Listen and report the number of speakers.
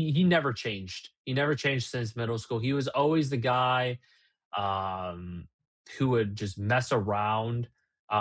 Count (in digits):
1